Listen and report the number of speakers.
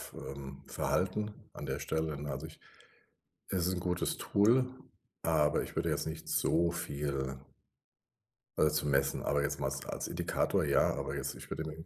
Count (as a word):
one